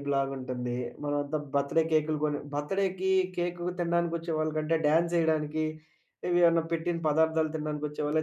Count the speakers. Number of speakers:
one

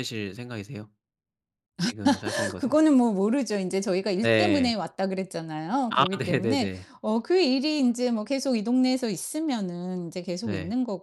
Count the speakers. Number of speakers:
two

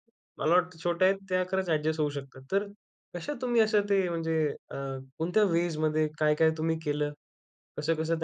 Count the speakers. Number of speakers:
one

